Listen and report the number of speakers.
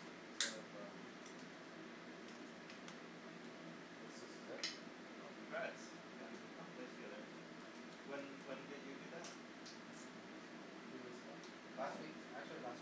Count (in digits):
2